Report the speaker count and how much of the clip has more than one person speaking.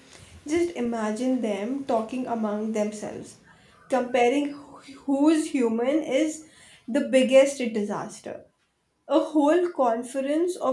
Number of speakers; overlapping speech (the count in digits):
1, no overlap